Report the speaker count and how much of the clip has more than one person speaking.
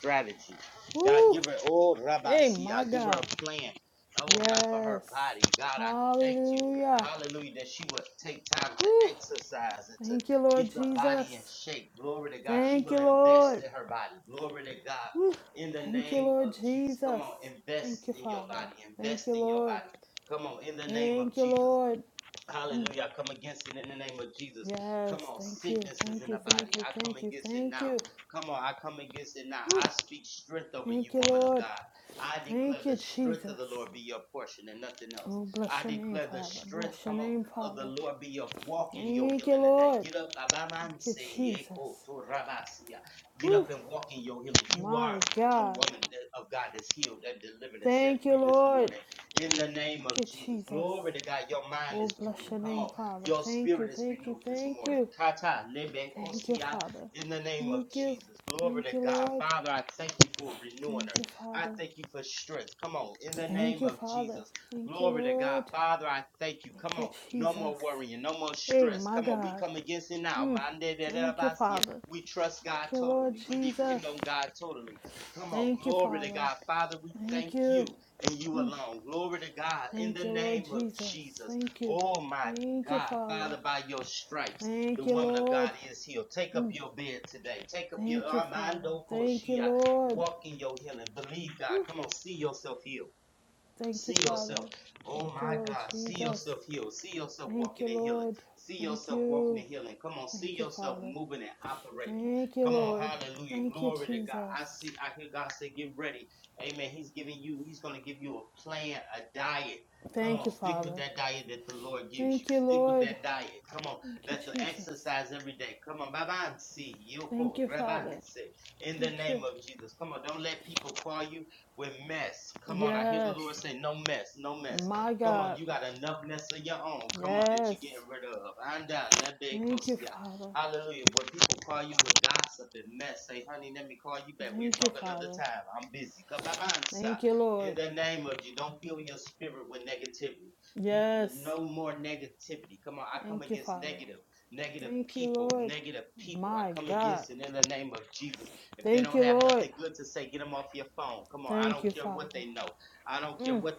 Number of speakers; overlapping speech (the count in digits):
2, about 39%